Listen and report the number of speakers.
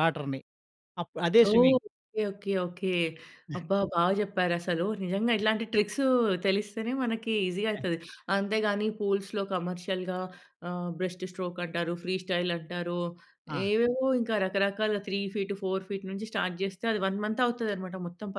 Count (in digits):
2